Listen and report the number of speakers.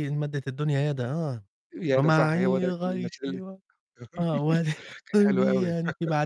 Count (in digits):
2